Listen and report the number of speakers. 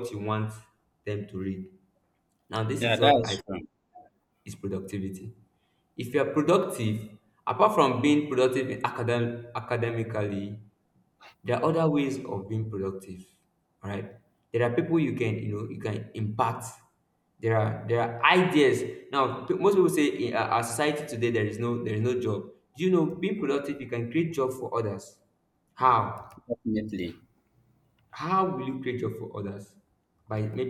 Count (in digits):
2